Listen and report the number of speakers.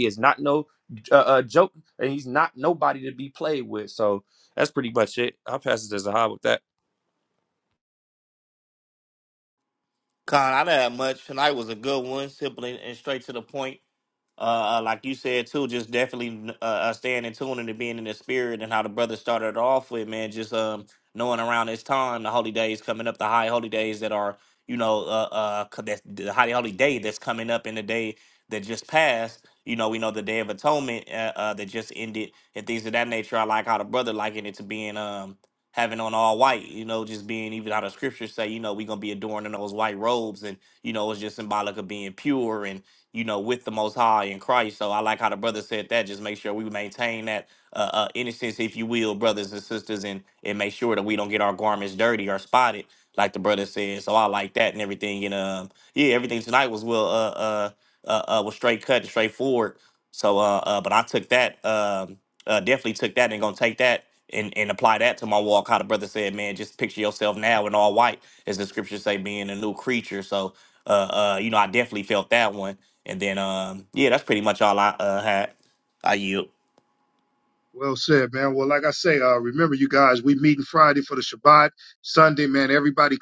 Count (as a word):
three